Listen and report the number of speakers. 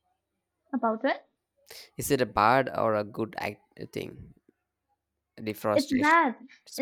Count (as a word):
two